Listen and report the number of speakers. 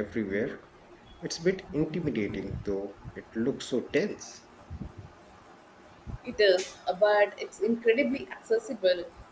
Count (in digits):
2